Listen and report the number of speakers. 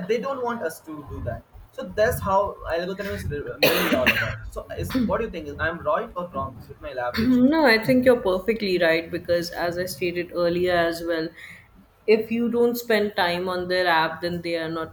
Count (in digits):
2